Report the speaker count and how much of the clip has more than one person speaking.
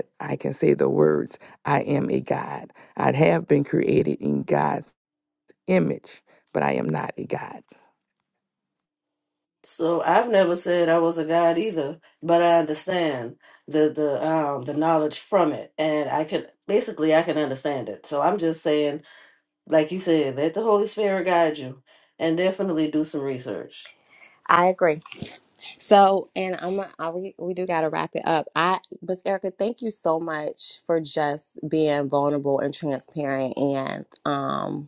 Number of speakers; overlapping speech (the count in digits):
3, no overlap